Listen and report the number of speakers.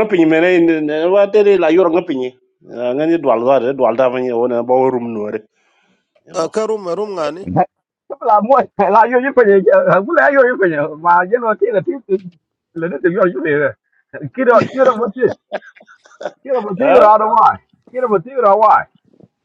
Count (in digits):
3